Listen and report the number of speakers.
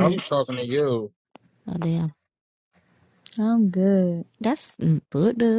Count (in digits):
3